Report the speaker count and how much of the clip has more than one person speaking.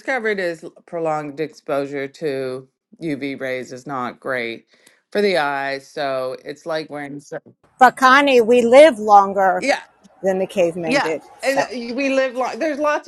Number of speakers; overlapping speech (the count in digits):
2, about 4%